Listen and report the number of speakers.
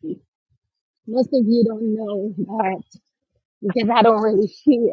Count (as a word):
one